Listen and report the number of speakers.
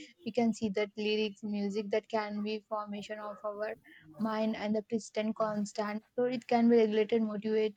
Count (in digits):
1